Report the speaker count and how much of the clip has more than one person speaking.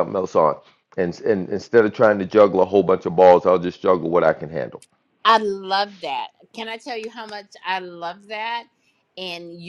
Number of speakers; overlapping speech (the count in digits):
2, no overlap